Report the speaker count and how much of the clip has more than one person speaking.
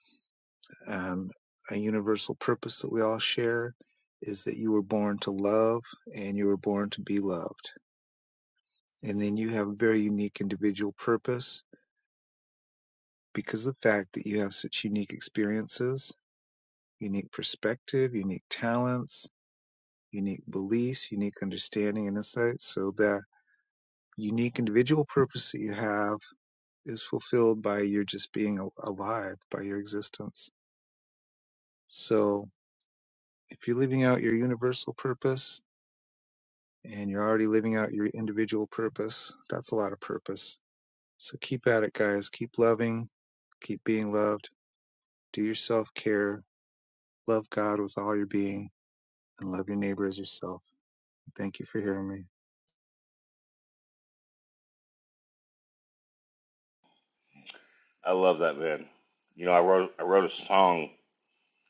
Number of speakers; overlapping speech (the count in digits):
2, no overlap